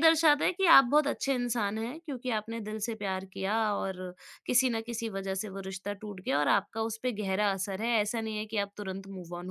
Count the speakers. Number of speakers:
one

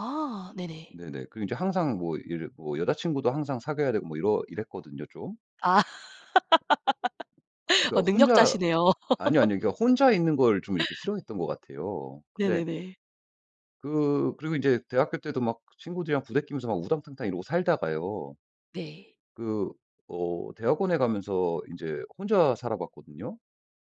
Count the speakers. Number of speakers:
two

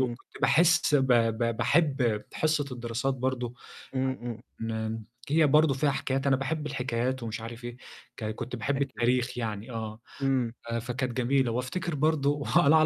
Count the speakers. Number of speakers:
two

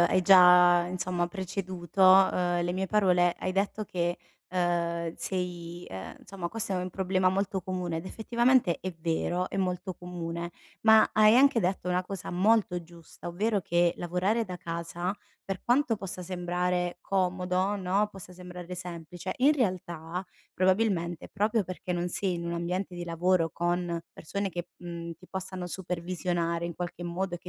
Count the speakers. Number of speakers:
one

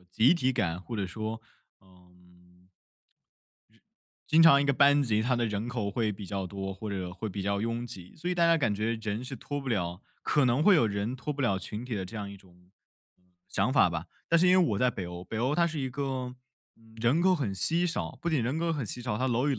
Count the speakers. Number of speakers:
one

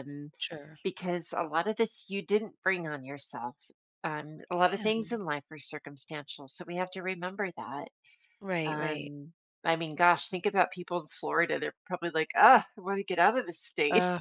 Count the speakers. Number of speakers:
two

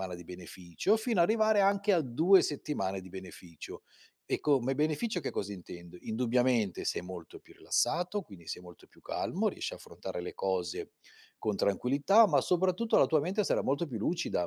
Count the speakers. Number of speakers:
one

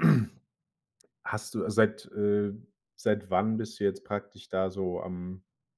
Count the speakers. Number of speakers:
one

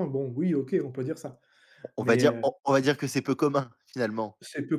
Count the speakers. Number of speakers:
two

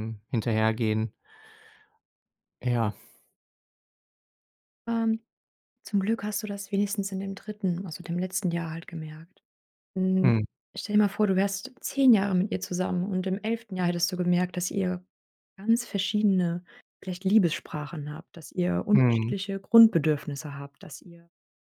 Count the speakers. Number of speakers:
two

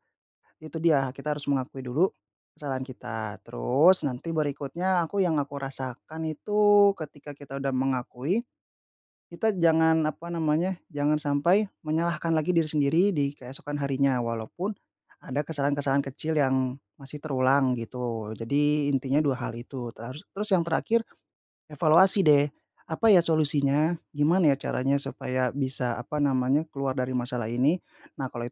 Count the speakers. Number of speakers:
one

